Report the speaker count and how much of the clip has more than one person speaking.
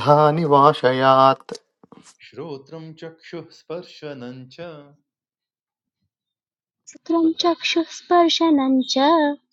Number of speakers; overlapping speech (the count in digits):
3, no overlap